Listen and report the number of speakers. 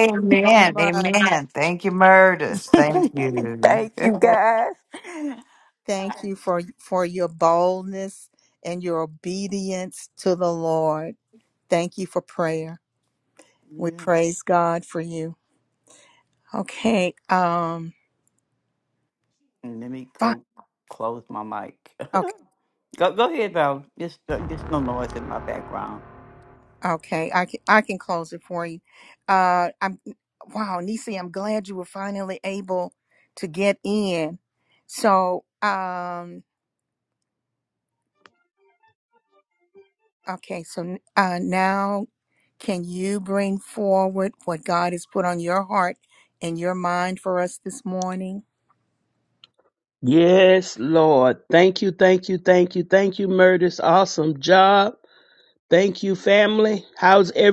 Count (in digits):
4